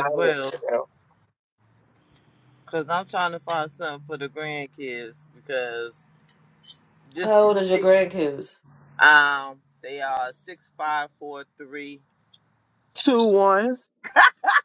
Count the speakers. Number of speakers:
three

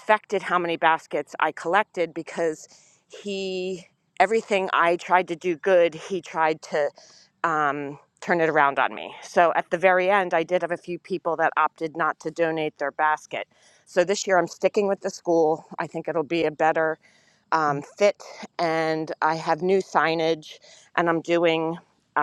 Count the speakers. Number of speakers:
one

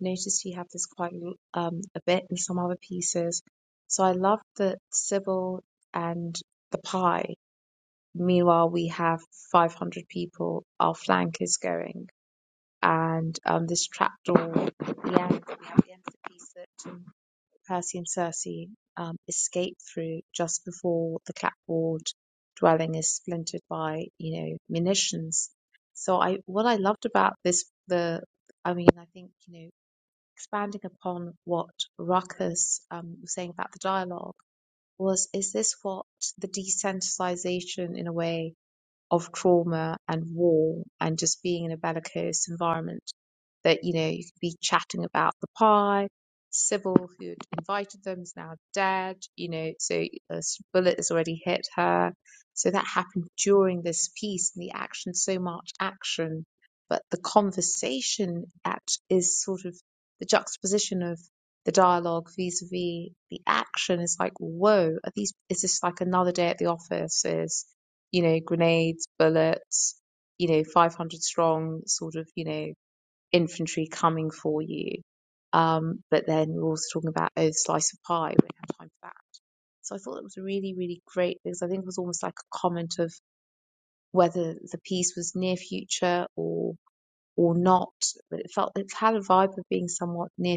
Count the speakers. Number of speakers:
one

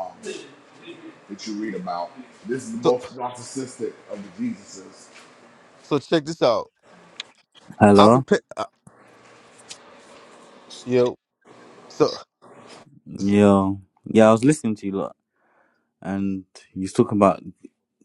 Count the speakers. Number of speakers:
three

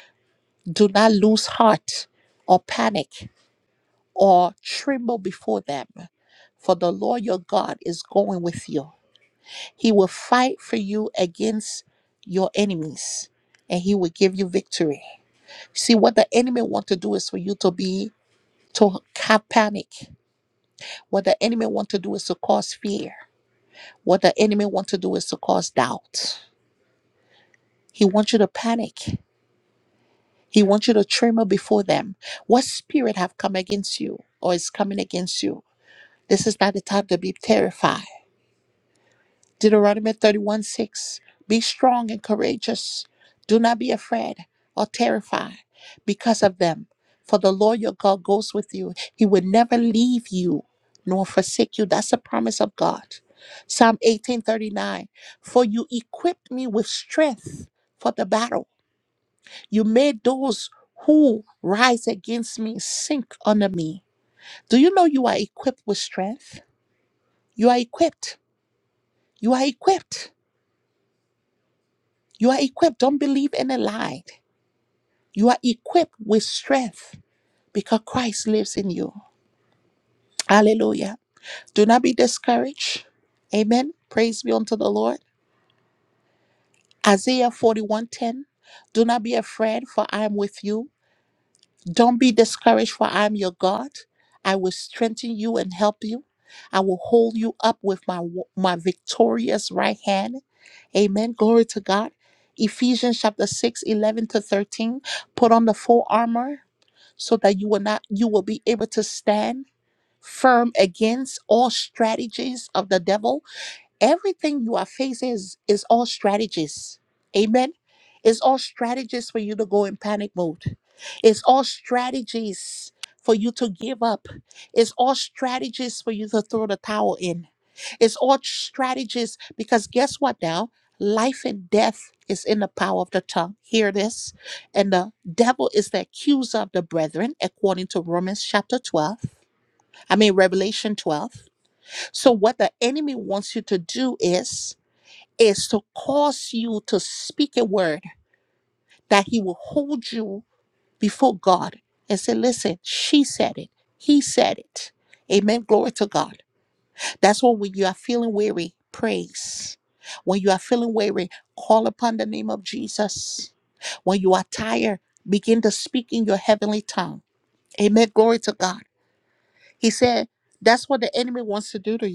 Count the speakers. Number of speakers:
one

